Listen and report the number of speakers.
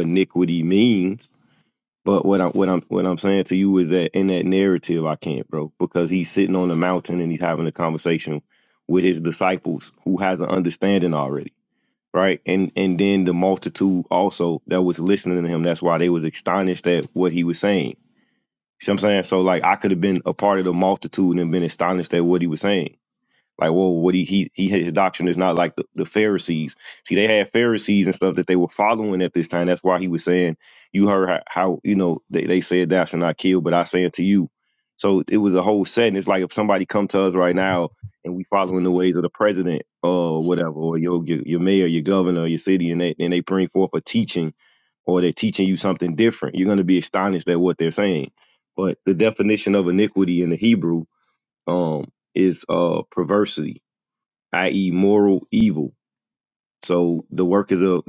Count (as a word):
one